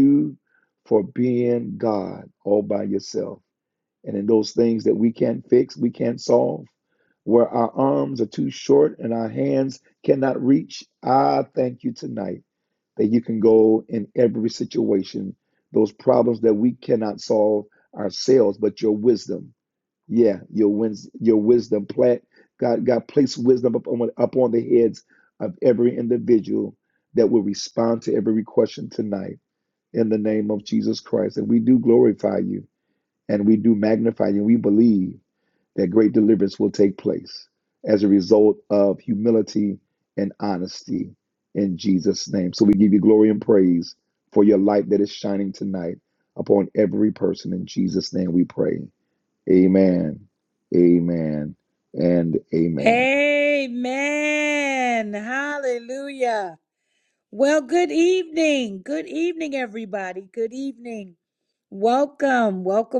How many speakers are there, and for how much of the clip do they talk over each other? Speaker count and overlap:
2, under 1%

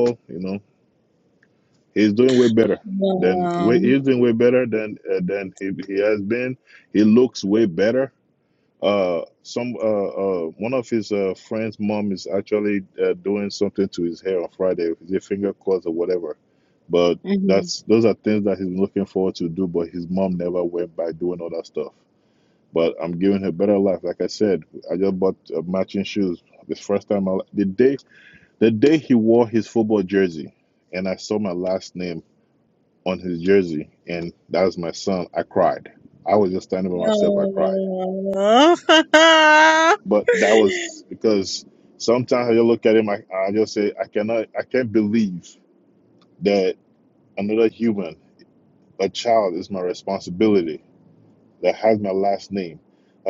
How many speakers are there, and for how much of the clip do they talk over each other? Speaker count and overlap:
2, about 3%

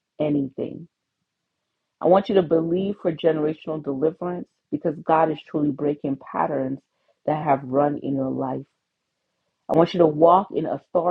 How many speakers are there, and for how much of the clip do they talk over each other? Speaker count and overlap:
1, no overlap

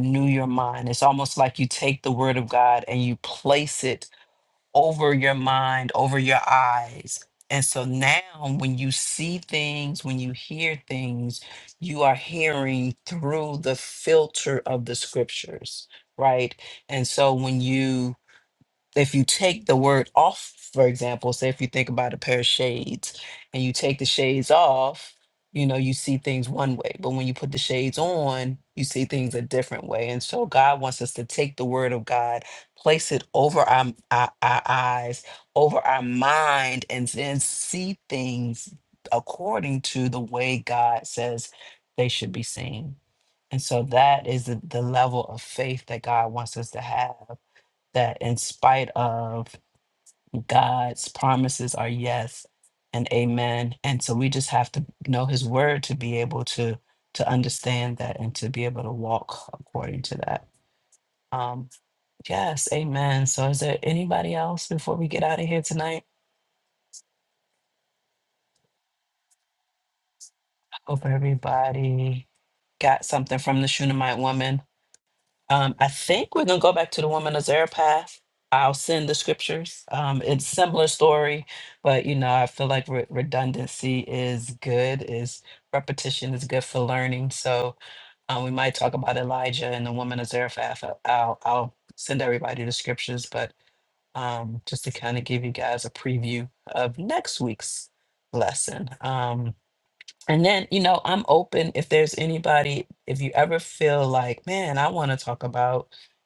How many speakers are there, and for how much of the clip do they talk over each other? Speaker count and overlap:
1, no overlap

